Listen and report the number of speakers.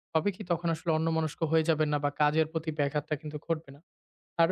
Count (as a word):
one